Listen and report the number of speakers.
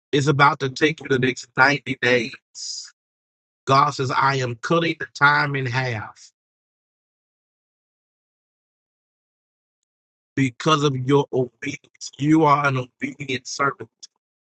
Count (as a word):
one